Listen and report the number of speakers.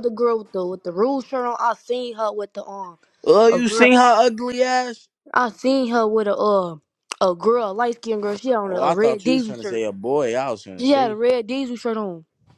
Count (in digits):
2